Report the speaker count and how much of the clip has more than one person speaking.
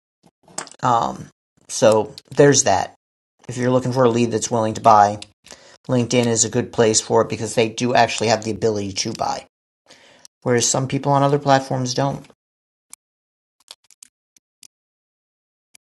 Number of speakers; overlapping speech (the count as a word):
one, no overlap